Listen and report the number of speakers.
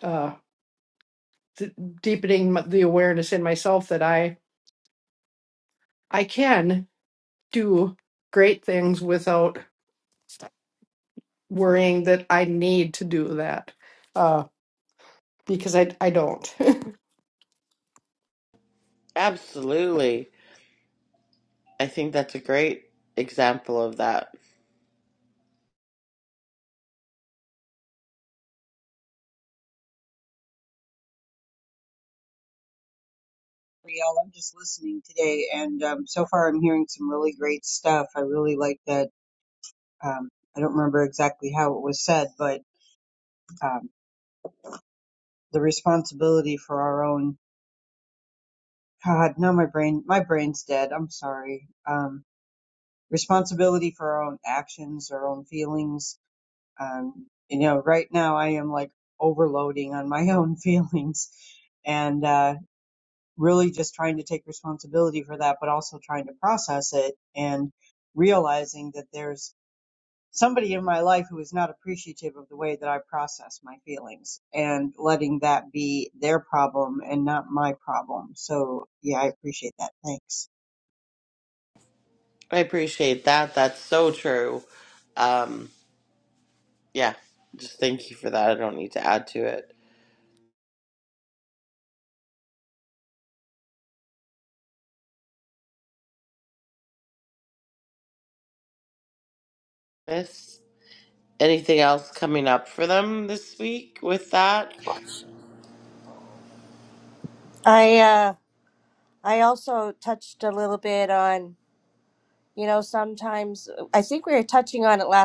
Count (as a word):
four